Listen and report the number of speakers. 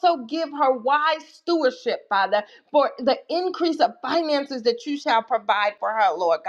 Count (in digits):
1